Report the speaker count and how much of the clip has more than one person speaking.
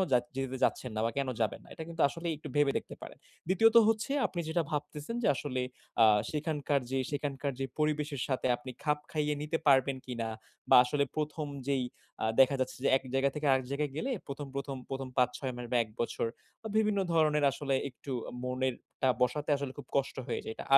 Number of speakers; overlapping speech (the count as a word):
one, no overlap